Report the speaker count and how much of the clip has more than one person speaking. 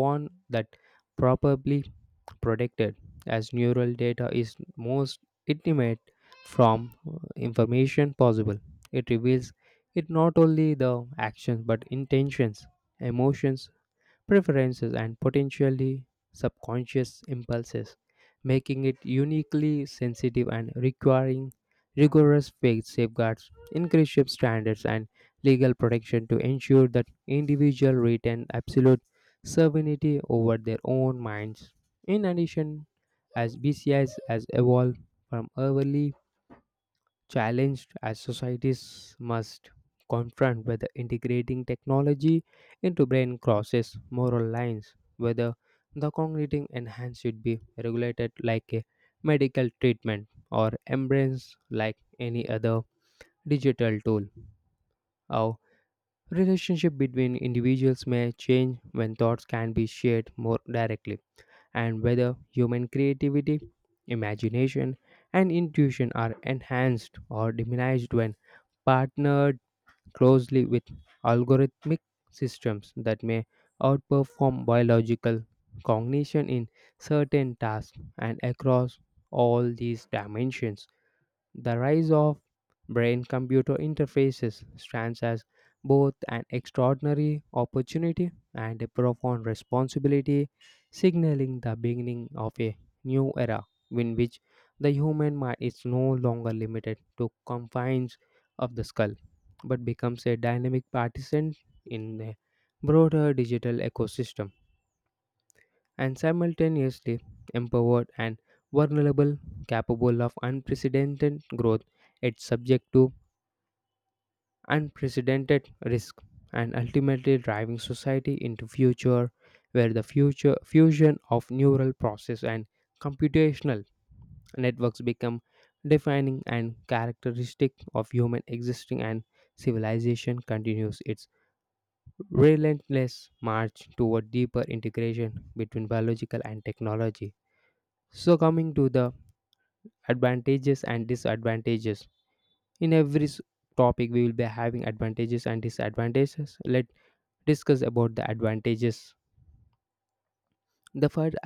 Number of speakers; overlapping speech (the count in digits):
1, no overlap